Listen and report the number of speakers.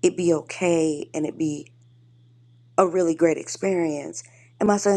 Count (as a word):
one